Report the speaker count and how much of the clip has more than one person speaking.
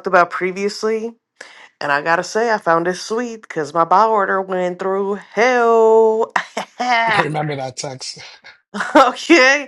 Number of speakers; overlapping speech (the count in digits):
2, no overlap